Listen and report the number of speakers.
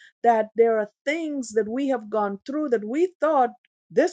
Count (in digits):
1